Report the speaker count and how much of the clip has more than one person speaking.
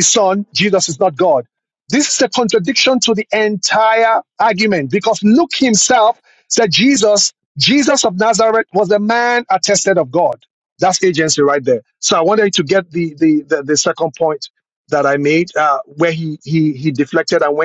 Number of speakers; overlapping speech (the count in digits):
1, no overlap